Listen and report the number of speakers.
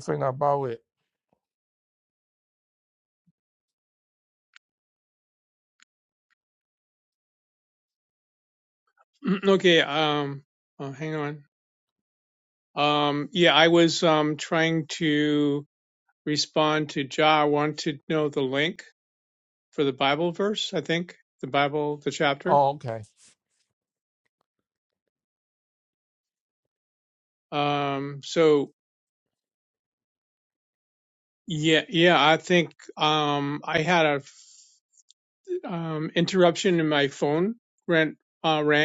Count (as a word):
two